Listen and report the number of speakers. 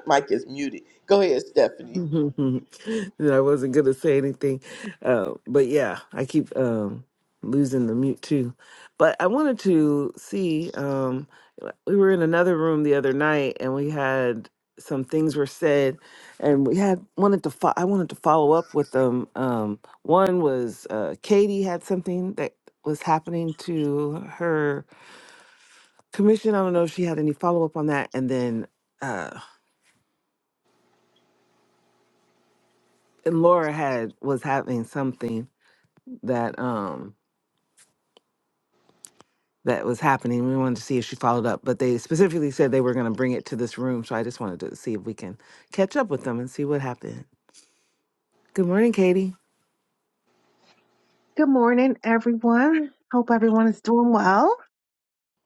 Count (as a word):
three